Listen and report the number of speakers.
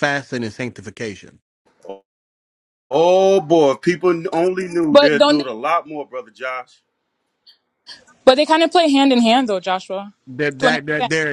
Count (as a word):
three